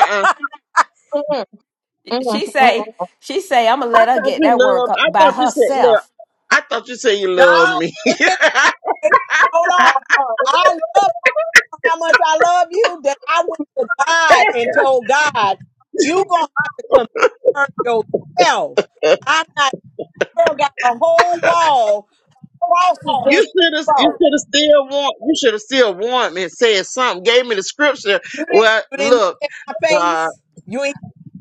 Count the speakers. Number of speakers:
four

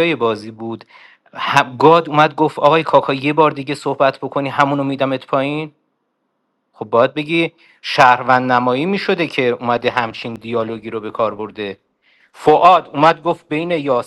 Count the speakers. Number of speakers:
one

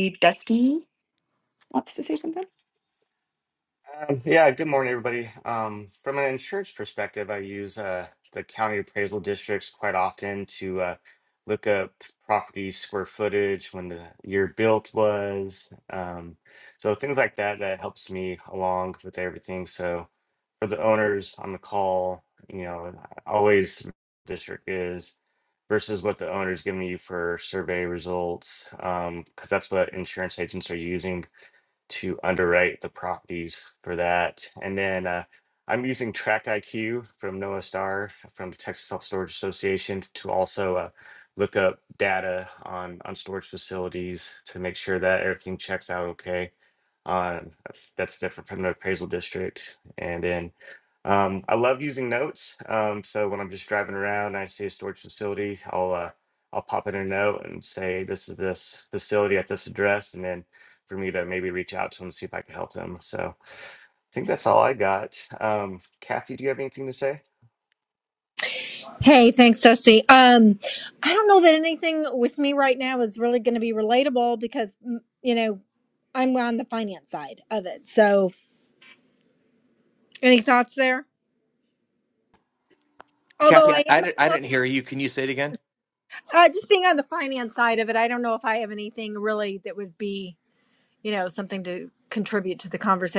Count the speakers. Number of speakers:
four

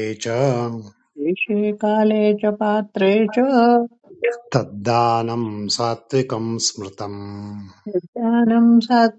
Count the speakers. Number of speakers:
two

